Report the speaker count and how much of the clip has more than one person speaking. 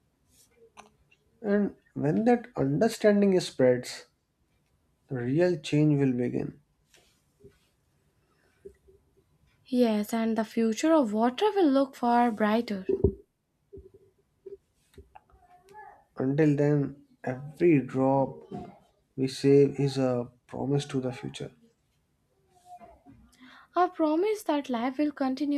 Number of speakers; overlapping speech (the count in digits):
2, no overlap